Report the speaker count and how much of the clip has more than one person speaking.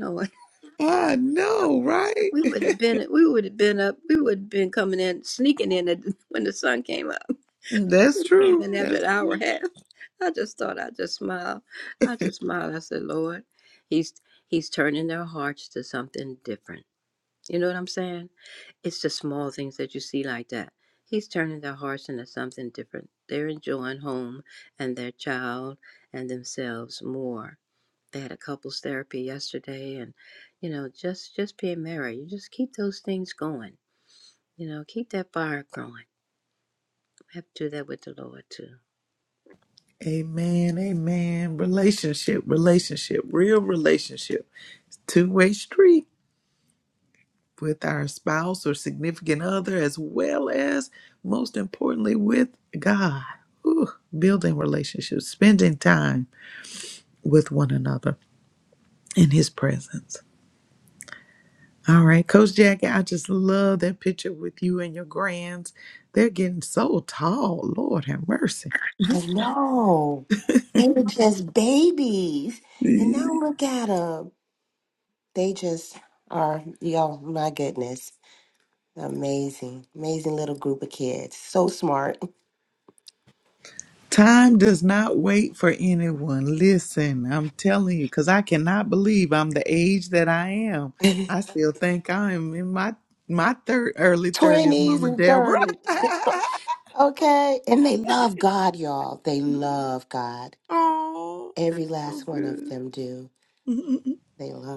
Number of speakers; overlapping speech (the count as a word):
three, about 3%